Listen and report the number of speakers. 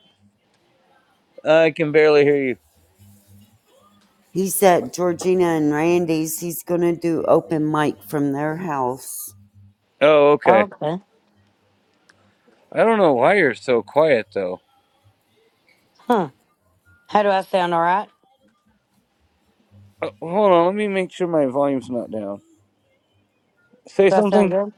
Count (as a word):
three